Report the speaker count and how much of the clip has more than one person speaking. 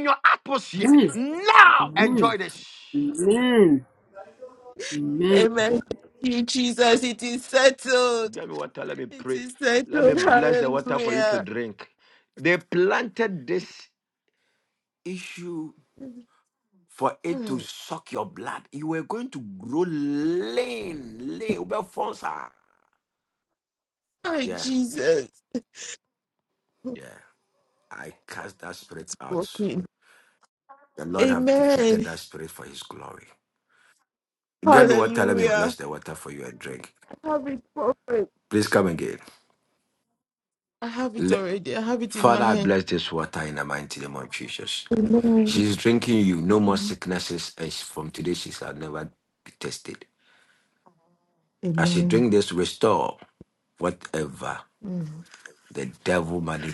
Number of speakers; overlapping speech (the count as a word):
three, about 12%